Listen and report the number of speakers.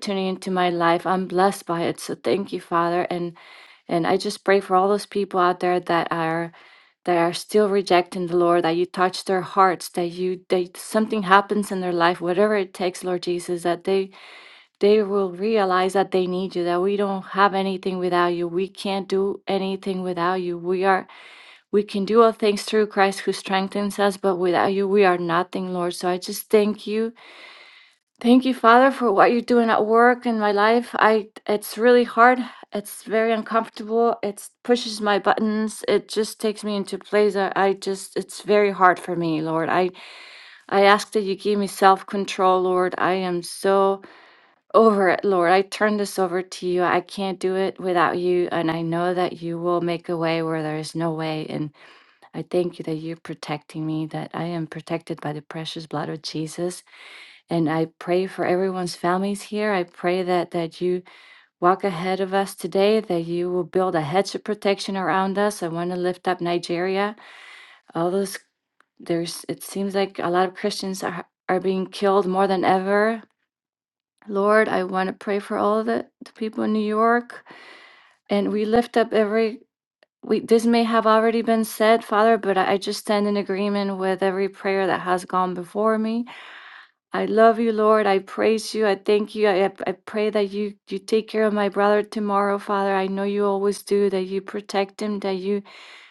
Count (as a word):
one